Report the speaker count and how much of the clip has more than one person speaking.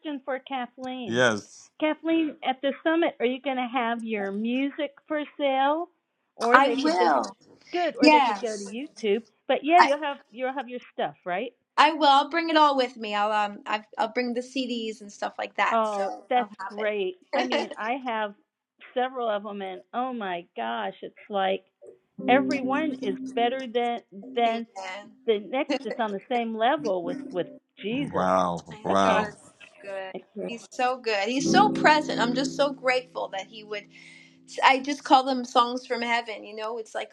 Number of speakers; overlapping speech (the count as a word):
three, about 11%